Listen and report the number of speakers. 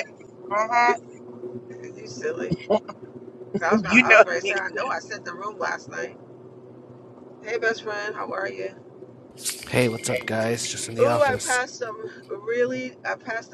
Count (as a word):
three